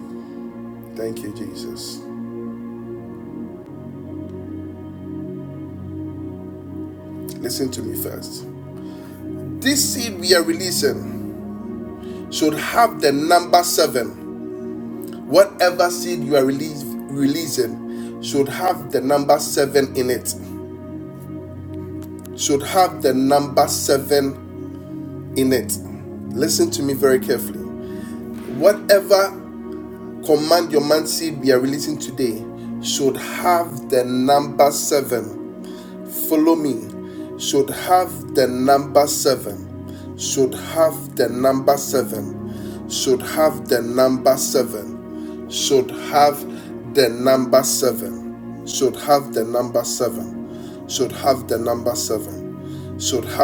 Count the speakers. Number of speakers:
one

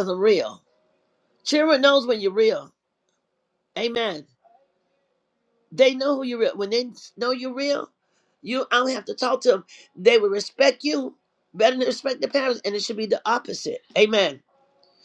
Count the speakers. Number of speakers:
one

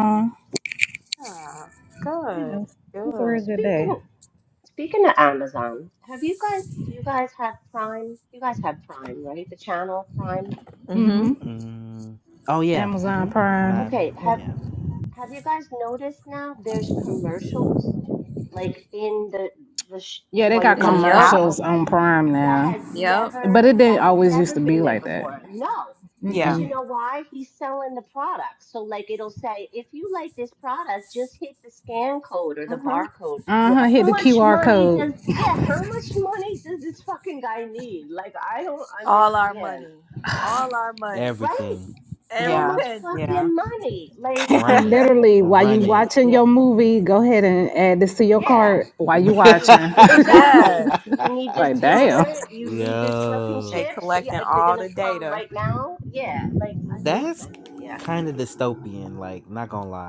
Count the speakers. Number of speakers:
five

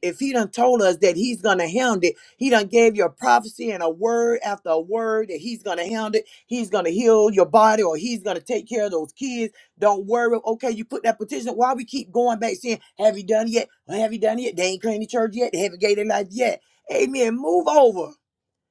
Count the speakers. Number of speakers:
one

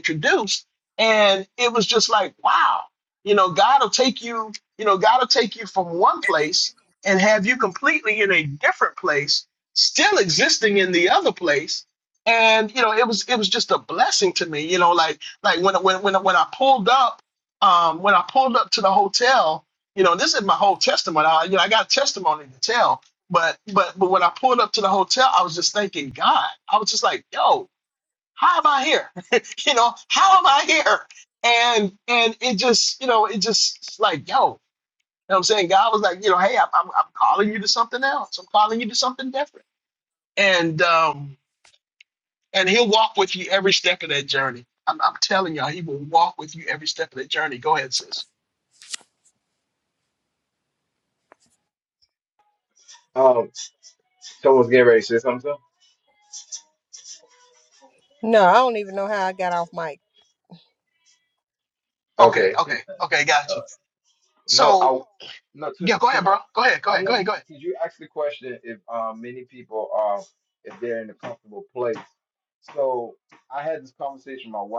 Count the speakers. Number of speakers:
three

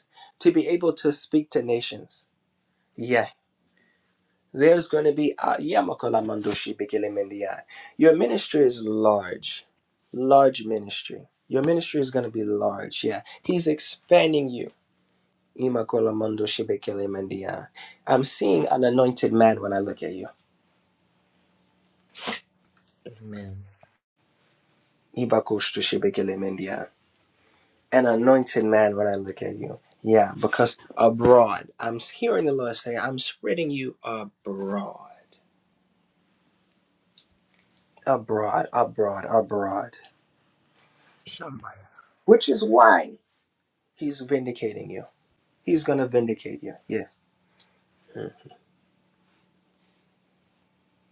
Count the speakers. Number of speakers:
two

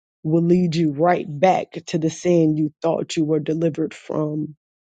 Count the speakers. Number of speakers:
one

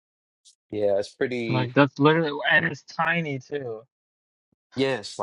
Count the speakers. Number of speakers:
two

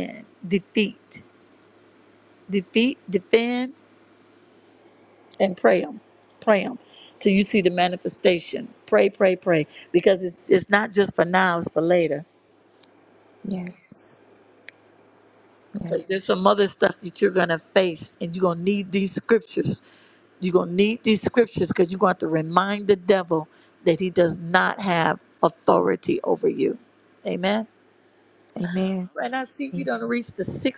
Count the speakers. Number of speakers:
two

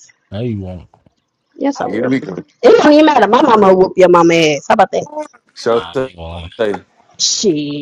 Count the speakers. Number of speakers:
three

